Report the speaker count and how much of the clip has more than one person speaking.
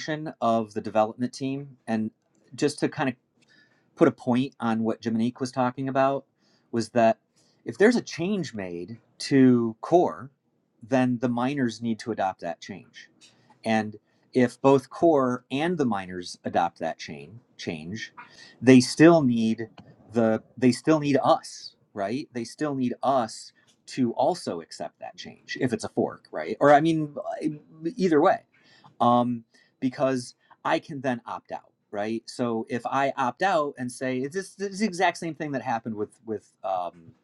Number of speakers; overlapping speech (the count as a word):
one, no overlap